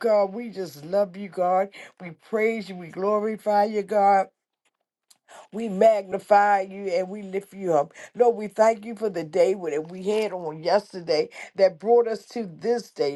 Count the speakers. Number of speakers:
one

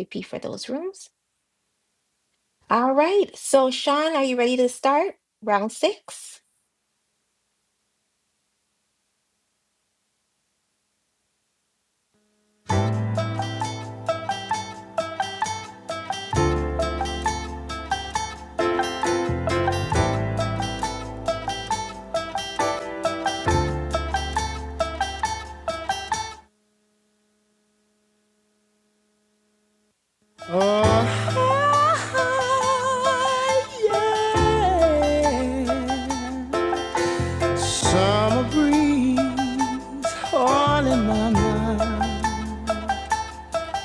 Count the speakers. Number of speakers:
two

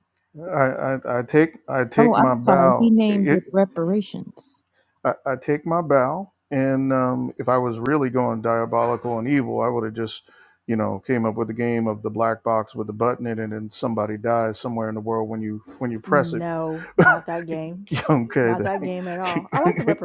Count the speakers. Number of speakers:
three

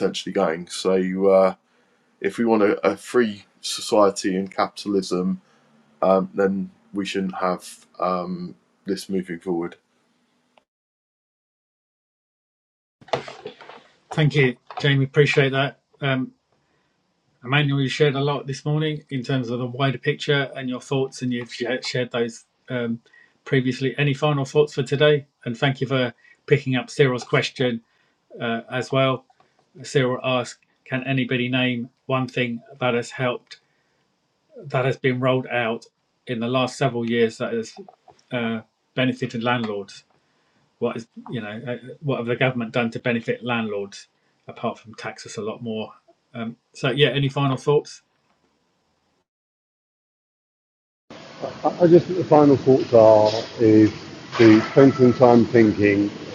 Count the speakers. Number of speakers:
three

